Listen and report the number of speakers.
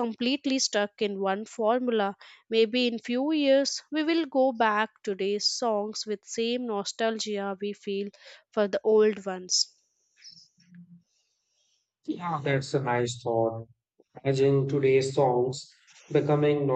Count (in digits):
2